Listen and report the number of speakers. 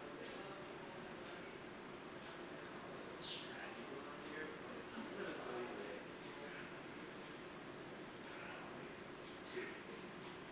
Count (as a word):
one